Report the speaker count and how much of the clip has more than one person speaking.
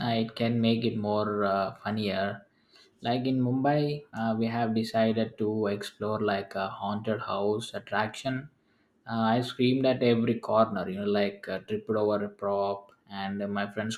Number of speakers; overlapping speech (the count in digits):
1, no overlap